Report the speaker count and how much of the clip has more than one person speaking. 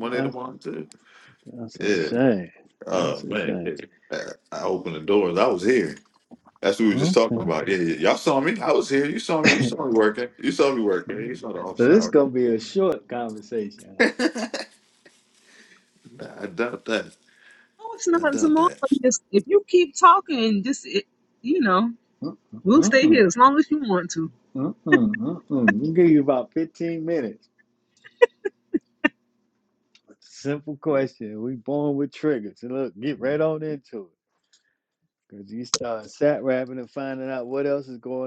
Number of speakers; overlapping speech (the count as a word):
three, about 9%